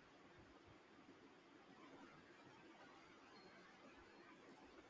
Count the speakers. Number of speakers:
zero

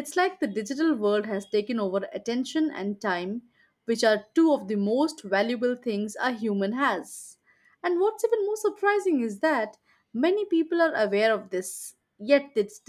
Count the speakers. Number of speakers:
one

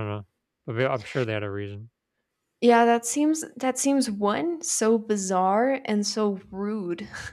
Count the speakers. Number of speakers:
two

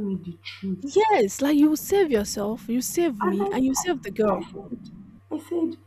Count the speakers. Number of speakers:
two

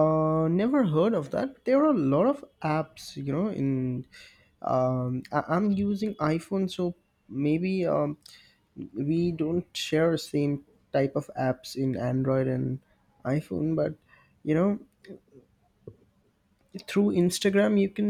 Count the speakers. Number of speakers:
one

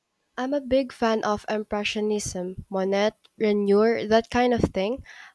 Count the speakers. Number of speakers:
one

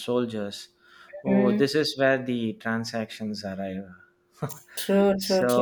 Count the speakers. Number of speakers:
two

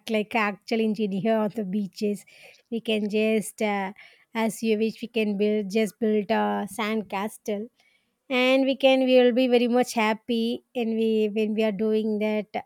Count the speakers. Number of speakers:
one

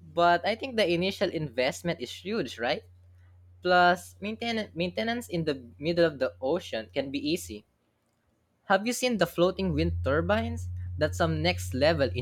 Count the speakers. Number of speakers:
one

